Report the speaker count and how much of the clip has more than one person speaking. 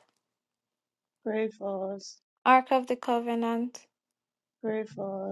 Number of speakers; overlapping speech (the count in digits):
2, no overlap